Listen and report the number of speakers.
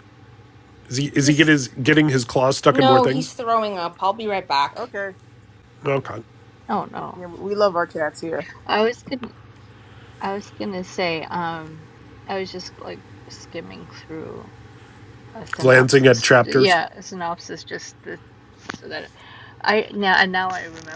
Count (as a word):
four